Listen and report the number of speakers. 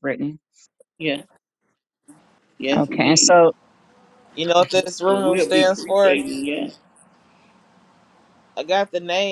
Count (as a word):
three